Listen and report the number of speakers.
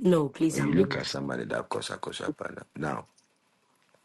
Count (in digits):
2